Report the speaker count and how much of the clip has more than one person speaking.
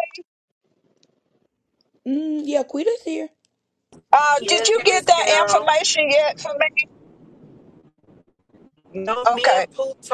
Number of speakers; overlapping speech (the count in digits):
3, about 19%